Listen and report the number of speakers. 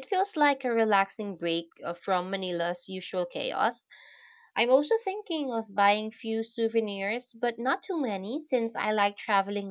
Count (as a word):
one